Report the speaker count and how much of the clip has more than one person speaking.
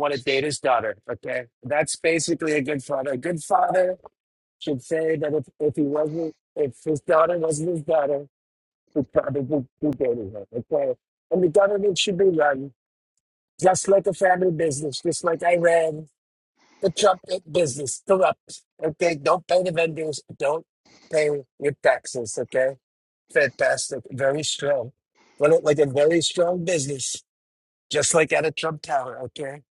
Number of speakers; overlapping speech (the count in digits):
1, no overlap